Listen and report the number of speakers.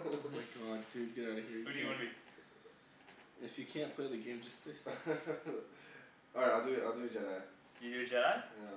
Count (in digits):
3